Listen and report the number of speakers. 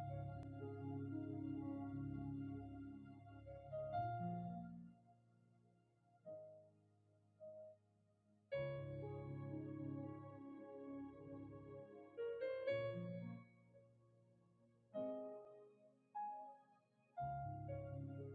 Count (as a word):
zero